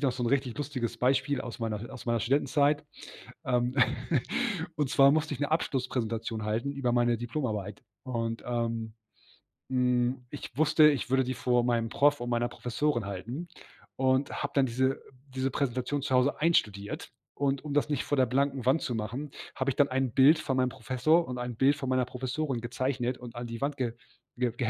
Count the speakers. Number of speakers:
one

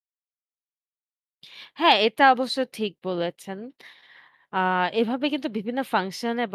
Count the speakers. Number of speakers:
one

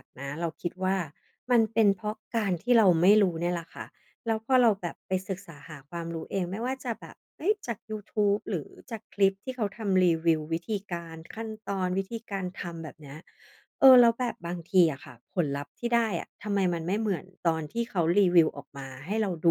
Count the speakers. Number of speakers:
one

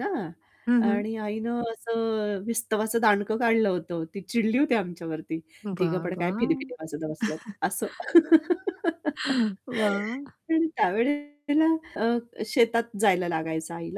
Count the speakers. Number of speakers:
two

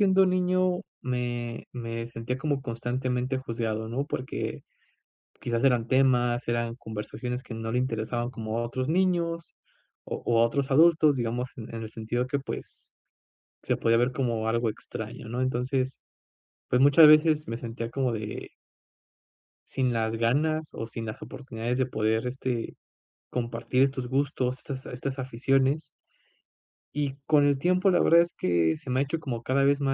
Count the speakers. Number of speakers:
one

